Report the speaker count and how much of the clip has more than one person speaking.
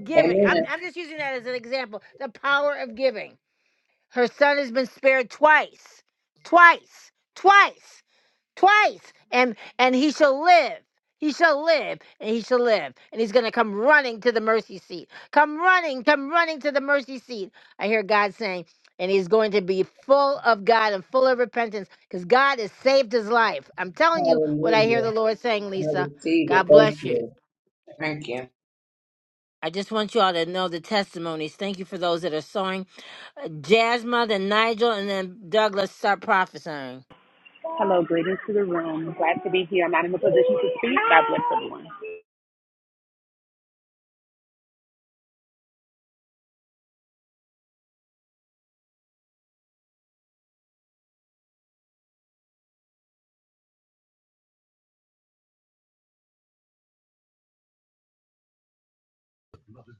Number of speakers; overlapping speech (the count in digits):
3, about 4%